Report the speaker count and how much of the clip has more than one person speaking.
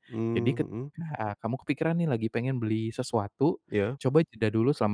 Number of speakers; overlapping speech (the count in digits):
2, about 6%